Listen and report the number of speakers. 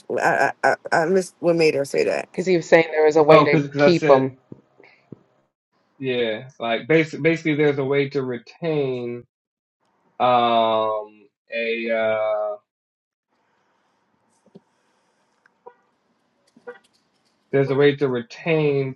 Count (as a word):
three